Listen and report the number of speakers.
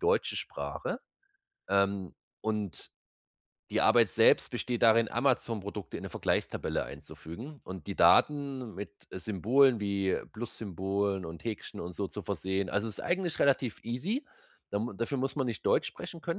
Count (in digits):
1